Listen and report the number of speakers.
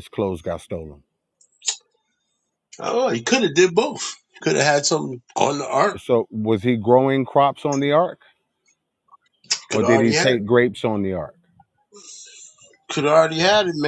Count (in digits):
2